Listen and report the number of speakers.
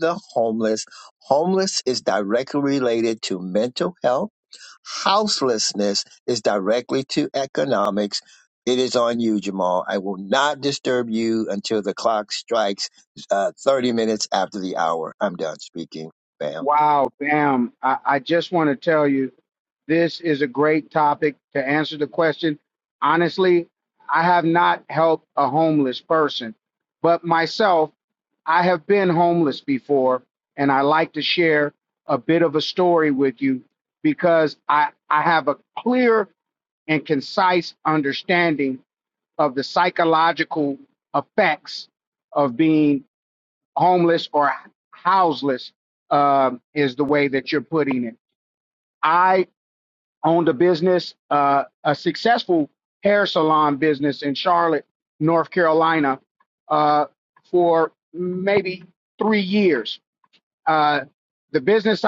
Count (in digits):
2